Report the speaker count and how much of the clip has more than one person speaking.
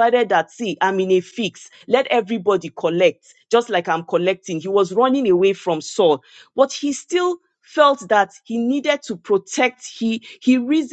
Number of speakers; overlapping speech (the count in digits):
1, no overlap